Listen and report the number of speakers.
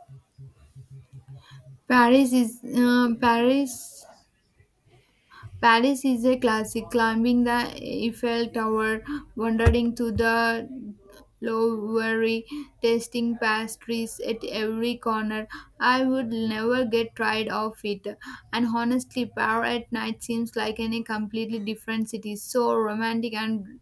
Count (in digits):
1